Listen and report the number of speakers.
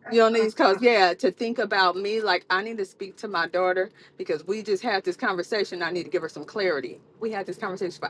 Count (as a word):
one